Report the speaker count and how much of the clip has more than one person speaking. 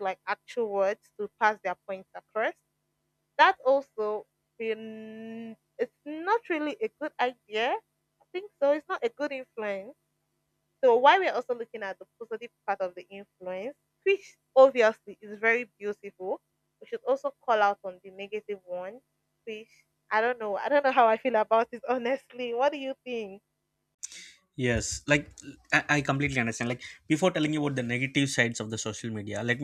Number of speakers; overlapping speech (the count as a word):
two, no overlap